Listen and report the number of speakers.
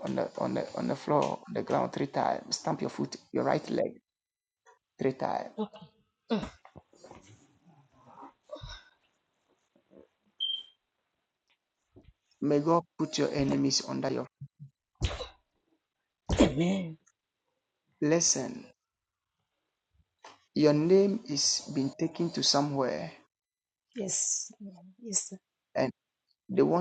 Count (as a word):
two